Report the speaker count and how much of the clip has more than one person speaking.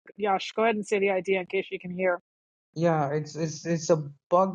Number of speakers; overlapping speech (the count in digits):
2, no overlap